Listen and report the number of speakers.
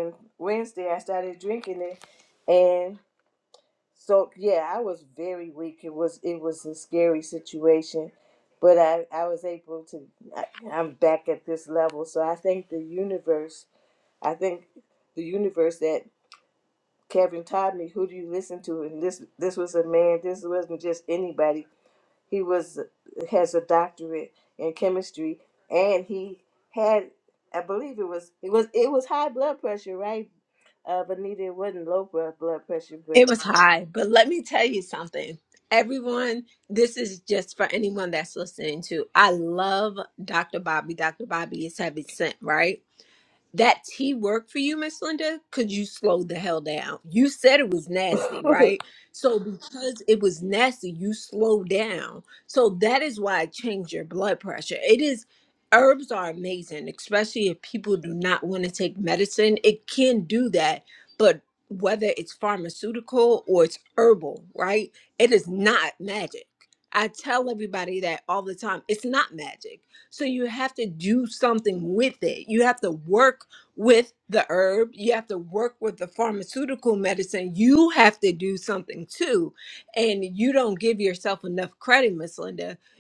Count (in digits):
2